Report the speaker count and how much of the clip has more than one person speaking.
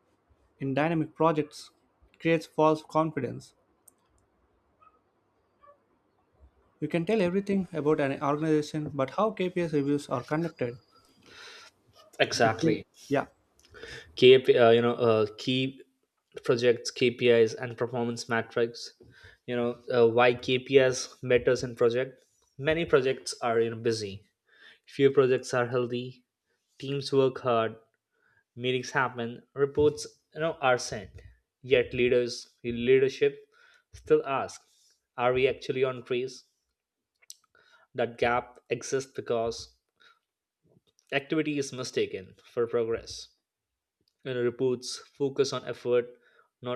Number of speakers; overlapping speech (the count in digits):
2, about 1%